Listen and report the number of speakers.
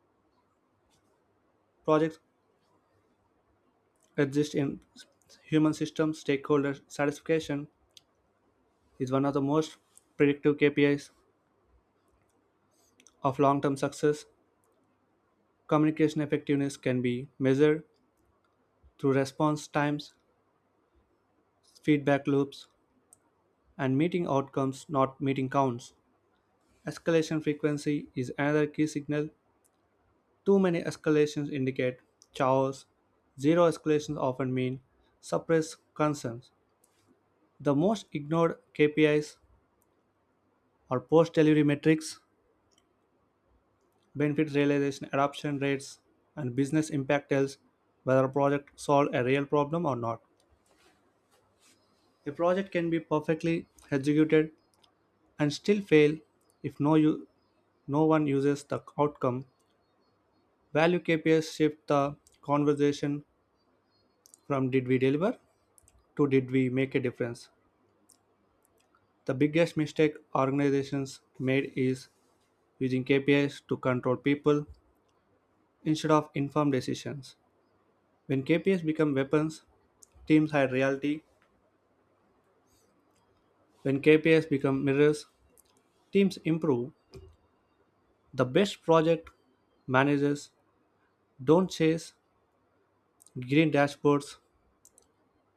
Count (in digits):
1